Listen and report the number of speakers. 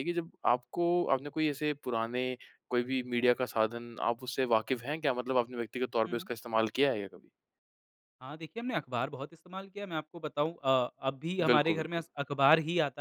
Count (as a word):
two